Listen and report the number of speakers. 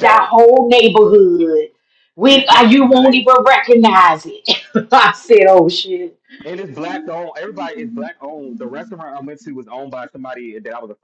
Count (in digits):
2